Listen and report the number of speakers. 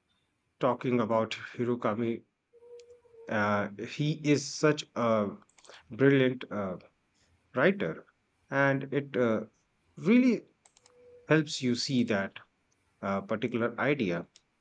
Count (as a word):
one